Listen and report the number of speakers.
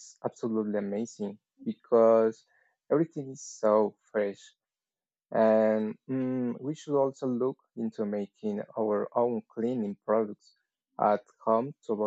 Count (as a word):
one